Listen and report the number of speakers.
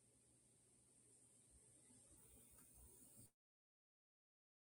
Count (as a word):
zero